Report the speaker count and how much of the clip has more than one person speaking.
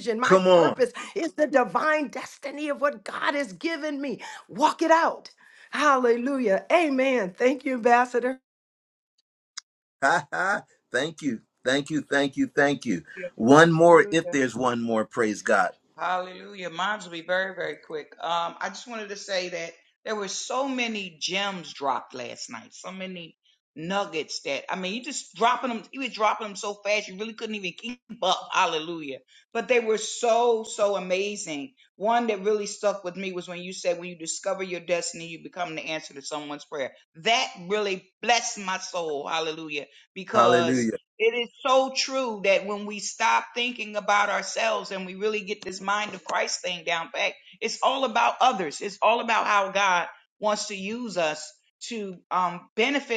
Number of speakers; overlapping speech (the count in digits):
3, about 3%